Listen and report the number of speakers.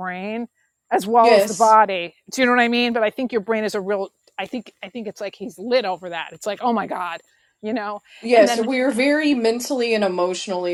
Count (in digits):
2